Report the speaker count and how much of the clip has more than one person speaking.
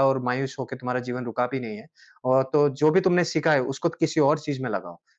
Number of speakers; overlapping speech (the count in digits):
1, no overlap